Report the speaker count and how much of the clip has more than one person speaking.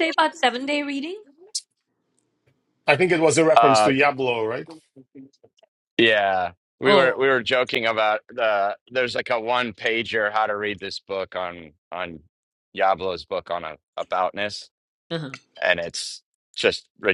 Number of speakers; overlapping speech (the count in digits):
3, about 4%